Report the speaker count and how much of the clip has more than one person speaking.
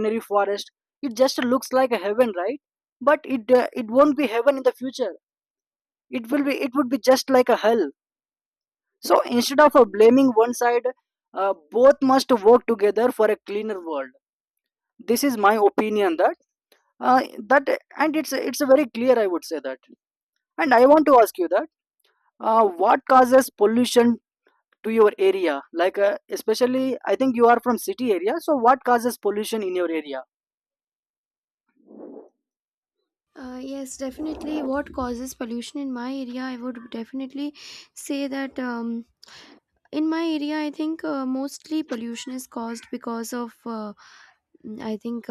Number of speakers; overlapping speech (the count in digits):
2, no overlap